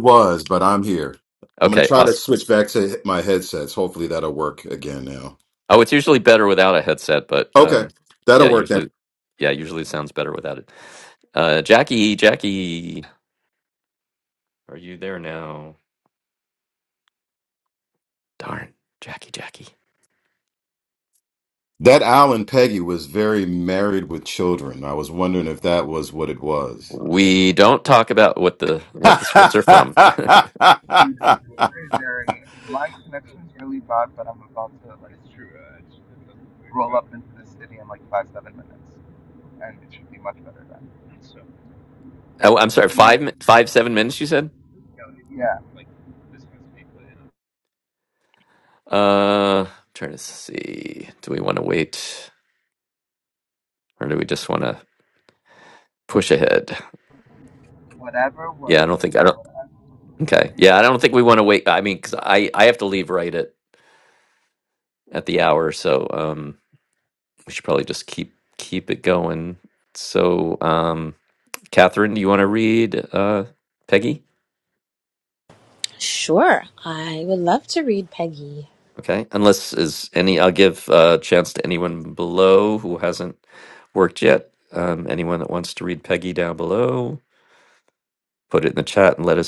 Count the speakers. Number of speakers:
four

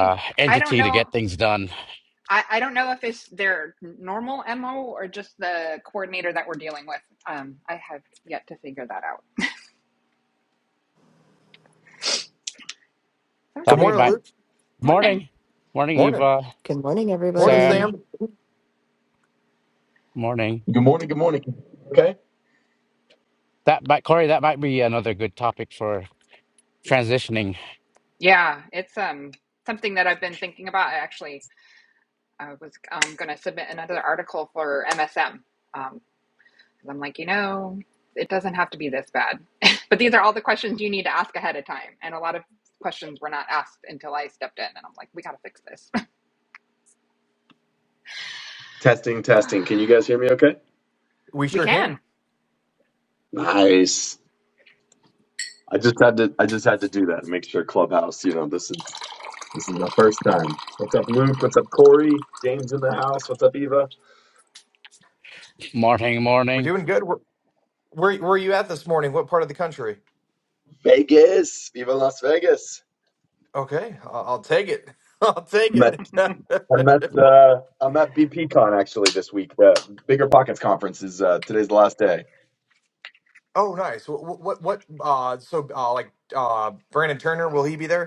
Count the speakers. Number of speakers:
five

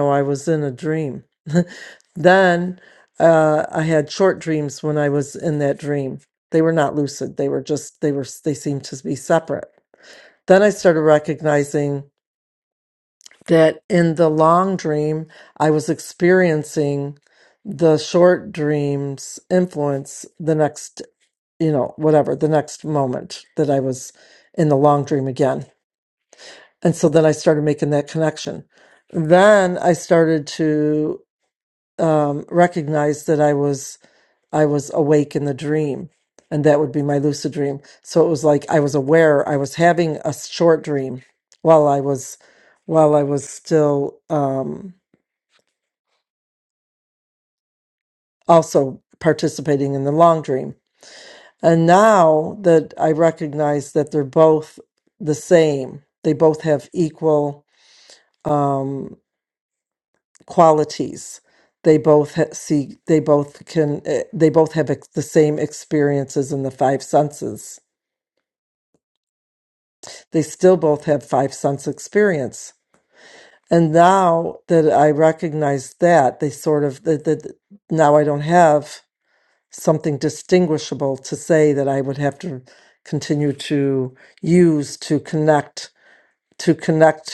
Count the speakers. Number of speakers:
one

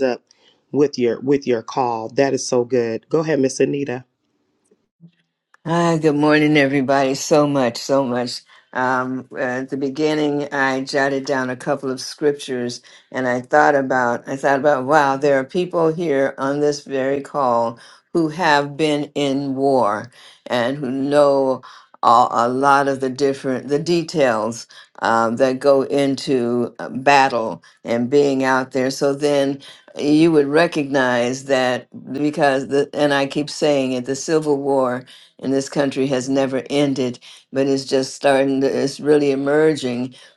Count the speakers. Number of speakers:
two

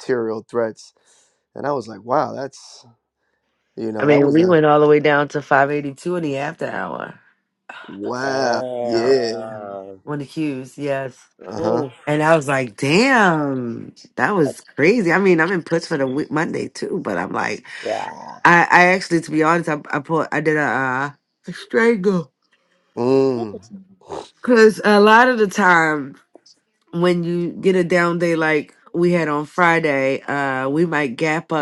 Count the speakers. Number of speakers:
three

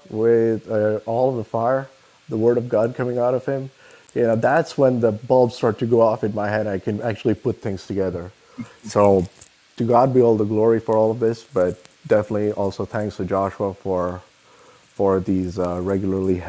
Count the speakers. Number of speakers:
one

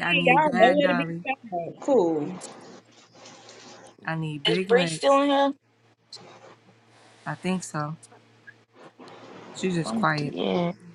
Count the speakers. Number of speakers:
three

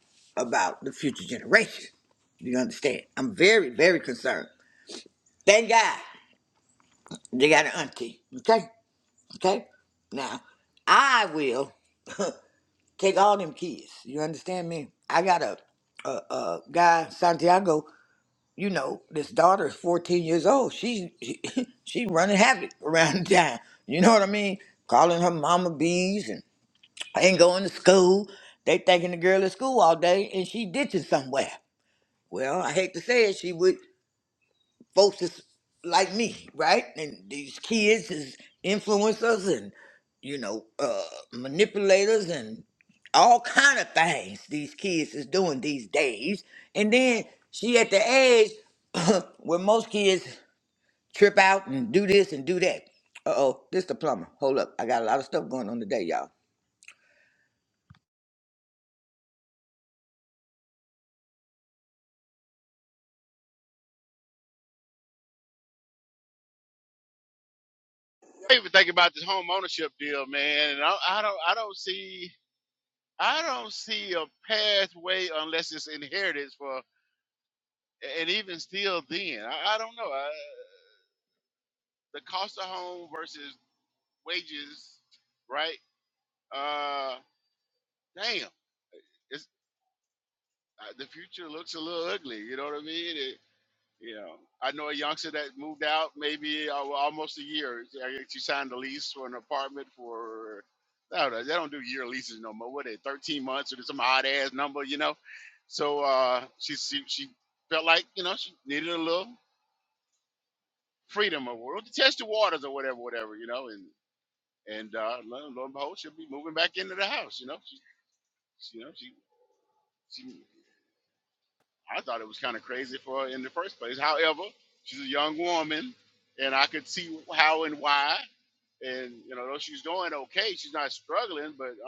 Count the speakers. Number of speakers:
two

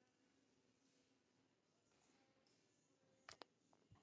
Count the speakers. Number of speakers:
zero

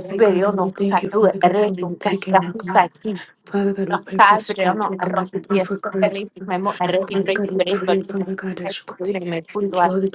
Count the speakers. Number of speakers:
two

